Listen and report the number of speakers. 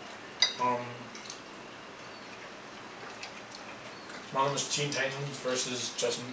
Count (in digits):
1